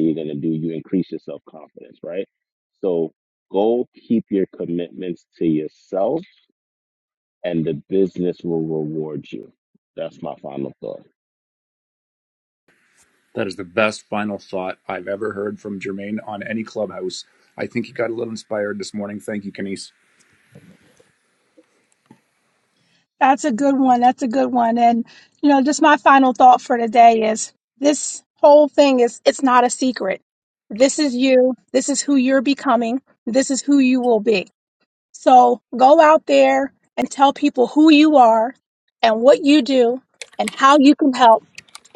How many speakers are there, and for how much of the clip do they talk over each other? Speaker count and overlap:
3, no overlap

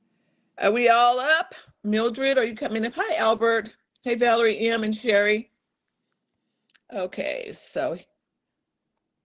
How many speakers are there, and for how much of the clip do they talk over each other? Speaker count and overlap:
1, no overlap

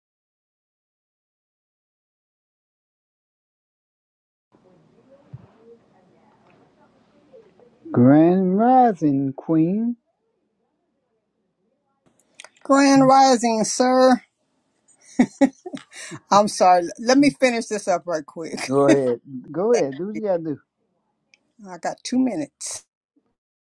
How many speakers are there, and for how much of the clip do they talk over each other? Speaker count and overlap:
2, no overlap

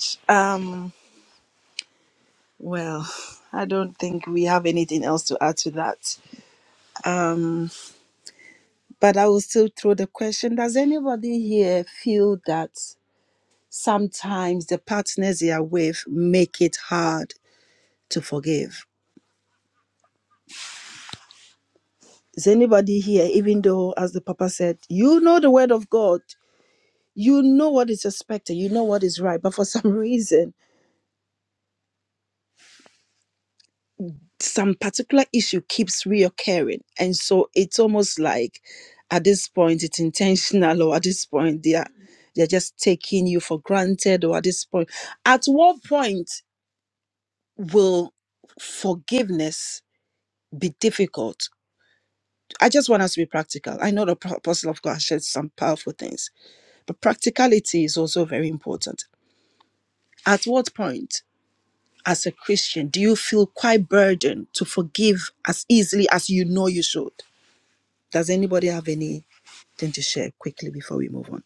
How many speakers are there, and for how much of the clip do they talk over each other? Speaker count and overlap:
1, no overlap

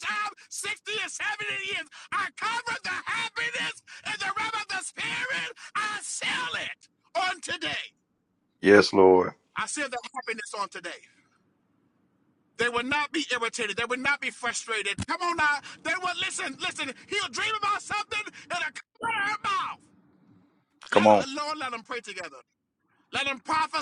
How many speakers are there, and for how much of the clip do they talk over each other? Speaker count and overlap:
2, about 1%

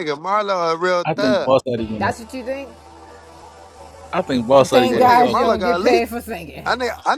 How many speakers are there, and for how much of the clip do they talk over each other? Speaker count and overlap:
3, about 32%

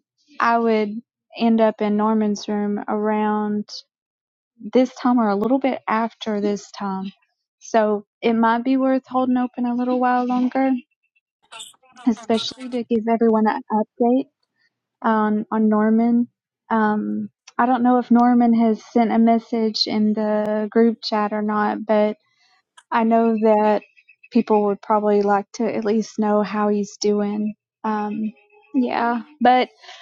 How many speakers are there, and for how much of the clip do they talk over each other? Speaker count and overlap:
1, no overlap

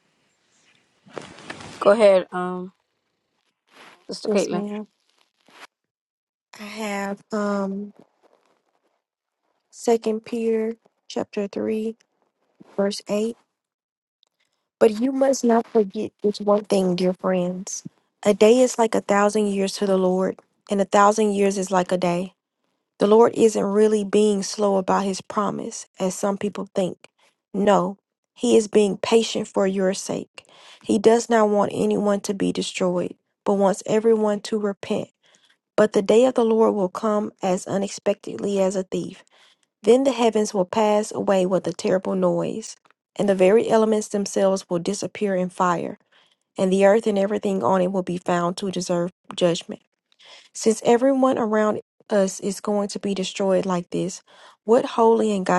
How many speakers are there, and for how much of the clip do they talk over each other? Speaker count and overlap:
2, about 1%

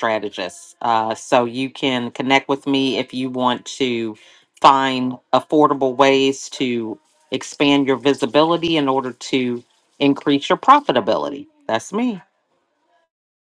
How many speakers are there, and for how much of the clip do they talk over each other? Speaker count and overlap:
1, no overlap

